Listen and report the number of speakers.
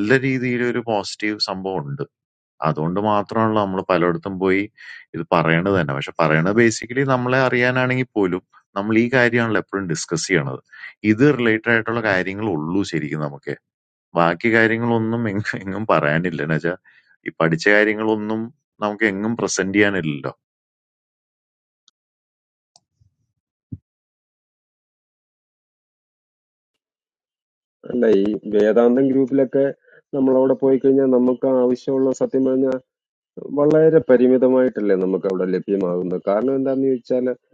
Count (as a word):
two